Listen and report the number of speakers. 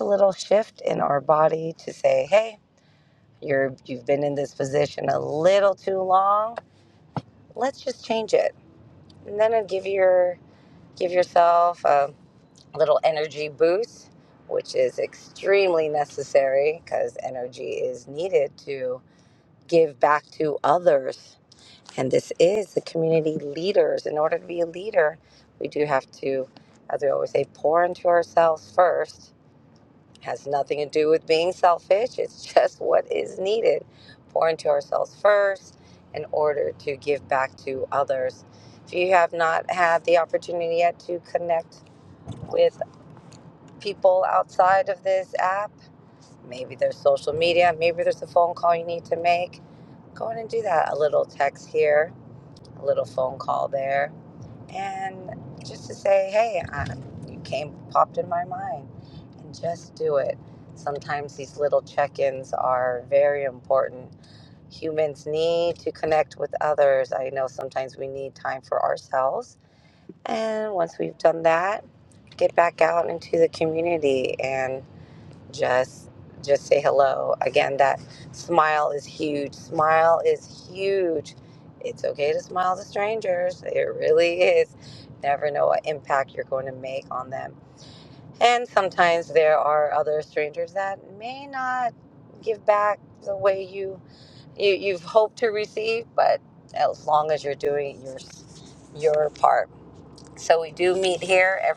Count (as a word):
one